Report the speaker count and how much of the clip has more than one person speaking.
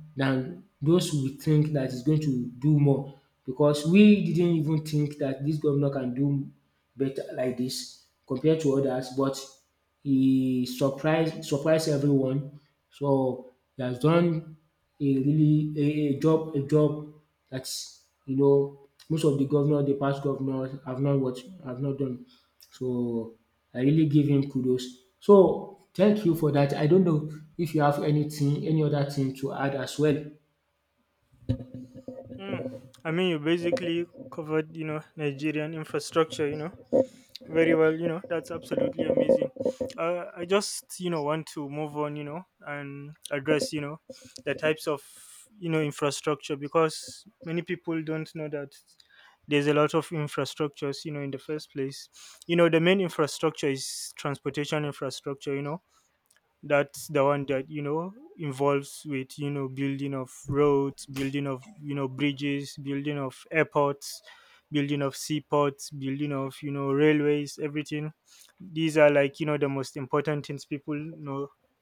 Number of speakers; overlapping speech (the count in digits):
2, no overlap